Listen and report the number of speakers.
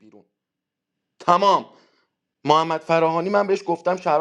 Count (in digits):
1